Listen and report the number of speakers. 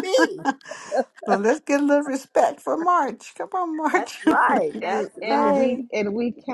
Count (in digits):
3